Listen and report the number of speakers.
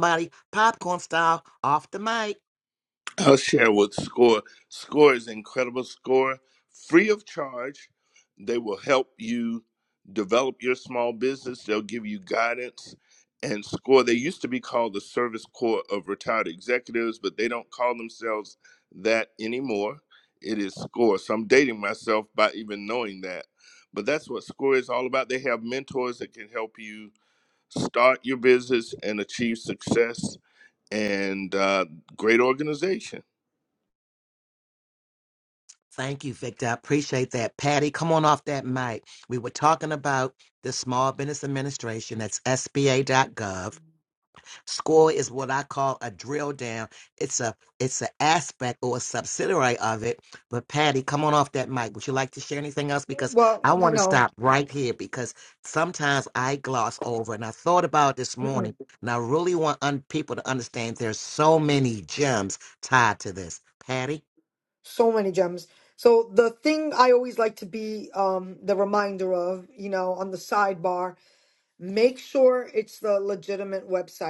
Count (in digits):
3